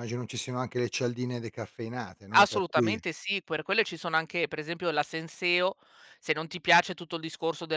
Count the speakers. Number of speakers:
2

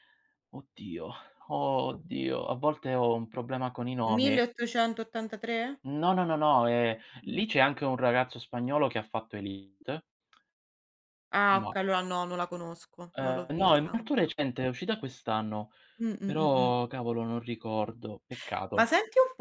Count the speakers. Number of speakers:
2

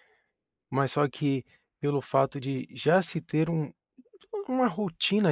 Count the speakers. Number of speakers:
1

